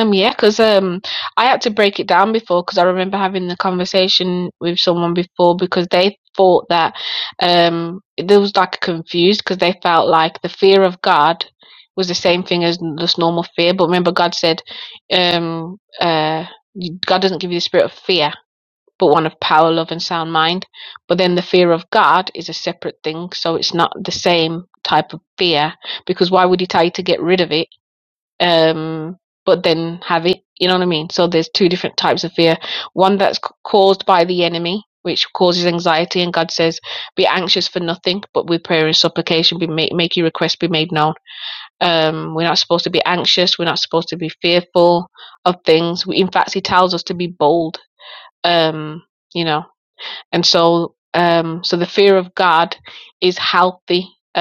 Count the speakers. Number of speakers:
1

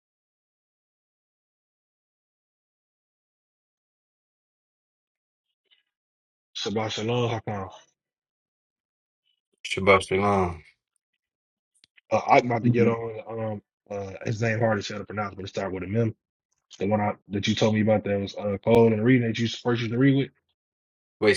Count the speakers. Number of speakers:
2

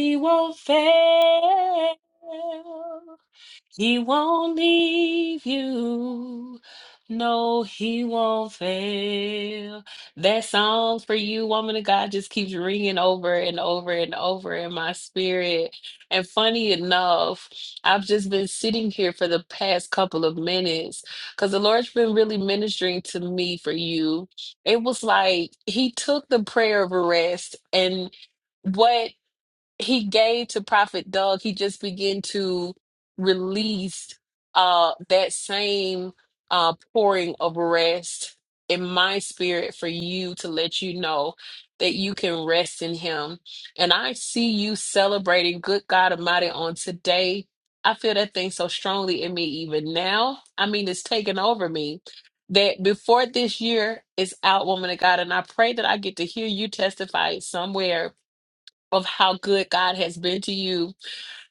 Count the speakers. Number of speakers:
1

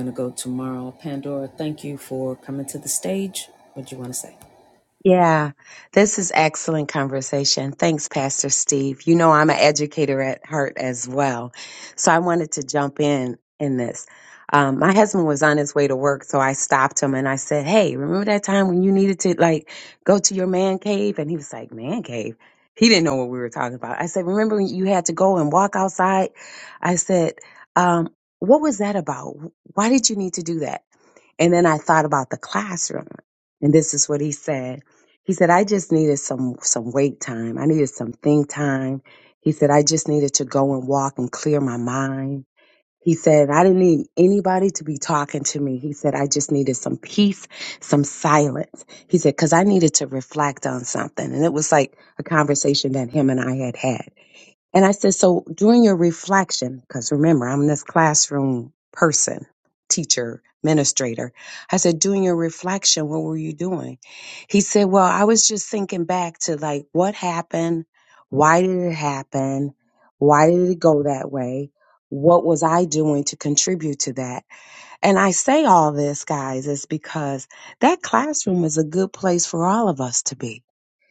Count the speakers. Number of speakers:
2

